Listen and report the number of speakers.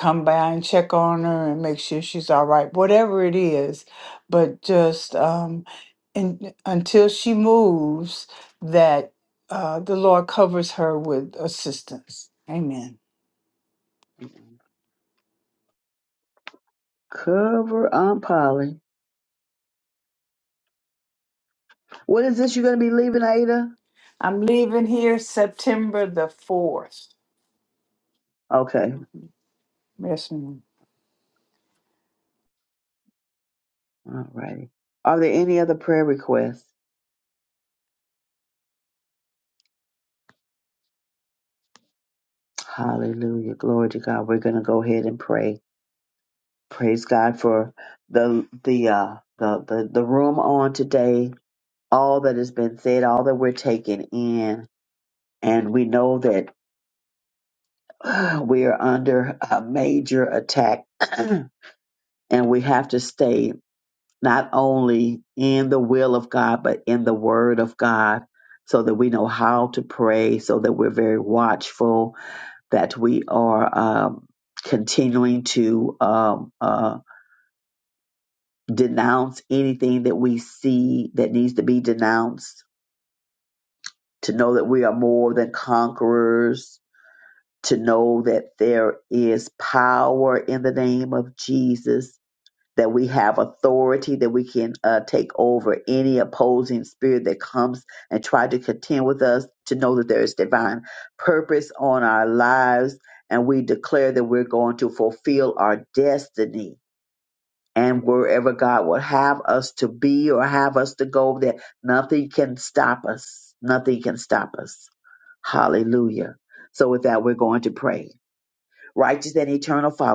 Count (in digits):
2